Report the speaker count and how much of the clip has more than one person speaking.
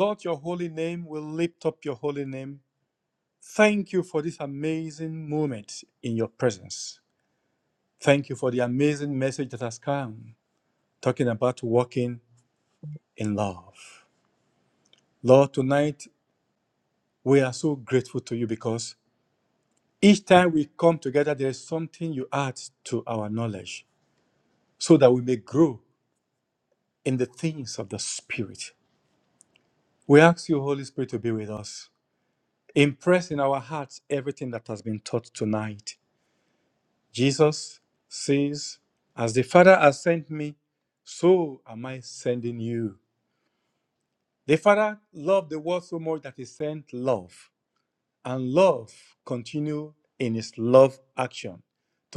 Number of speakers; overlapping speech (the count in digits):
1, no overlap